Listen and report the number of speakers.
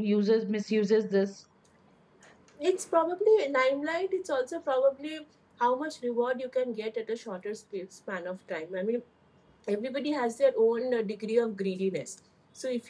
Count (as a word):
two